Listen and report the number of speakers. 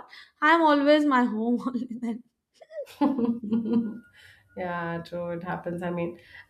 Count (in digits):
2